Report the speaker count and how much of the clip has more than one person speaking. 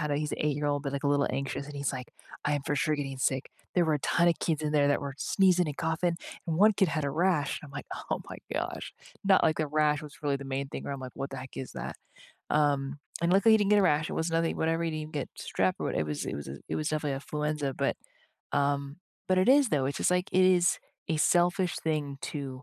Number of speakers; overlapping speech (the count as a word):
one, no overlap